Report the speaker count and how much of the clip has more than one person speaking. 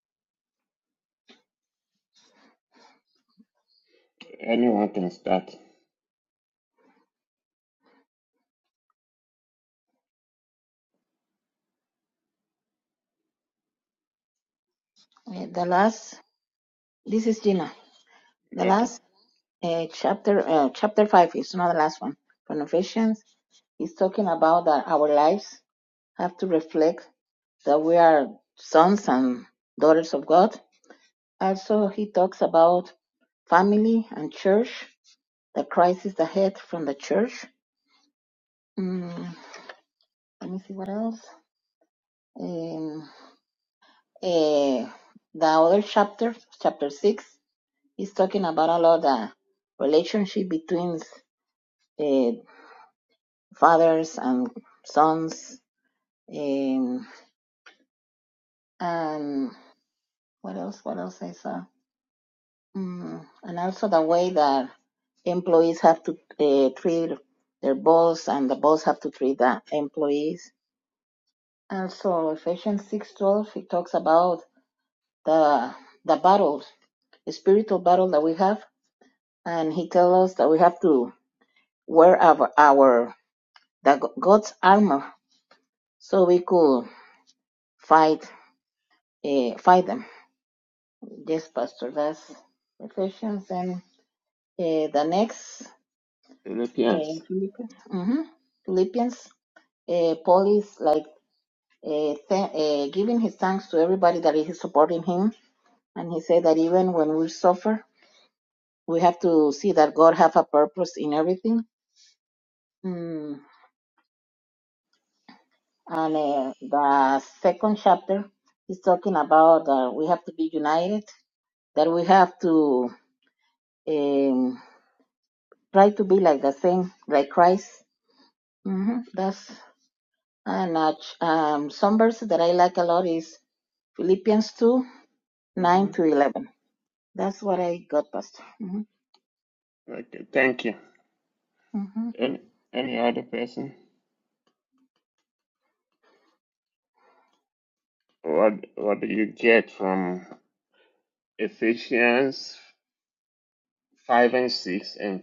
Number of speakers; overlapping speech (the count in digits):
2, about 1%